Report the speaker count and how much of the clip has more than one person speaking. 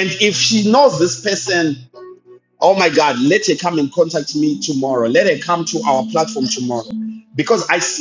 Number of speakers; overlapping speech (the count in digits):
1, no overlap